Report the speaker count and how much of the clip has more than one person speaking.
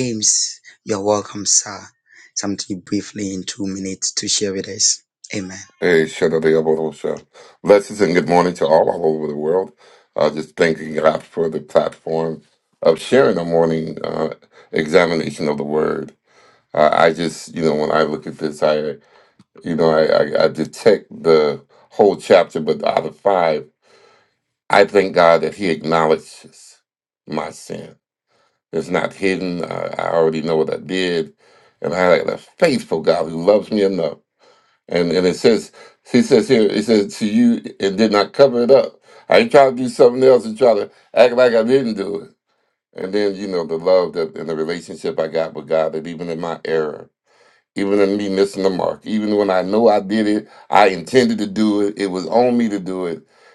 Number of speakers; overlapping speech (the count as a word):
two, no overlap